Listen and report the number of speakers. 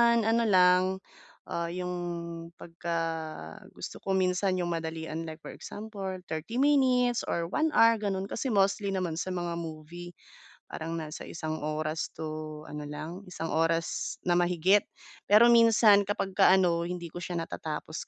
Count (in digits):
1